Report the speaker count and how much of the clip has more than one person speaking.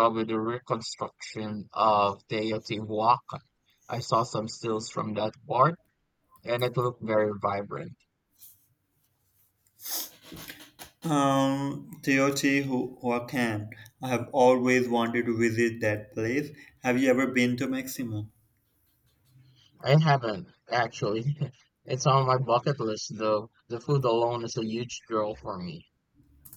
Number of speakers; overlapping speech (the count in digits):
2, no overlap